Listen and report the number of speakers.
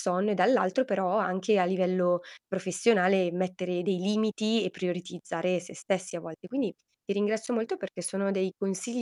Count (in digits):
1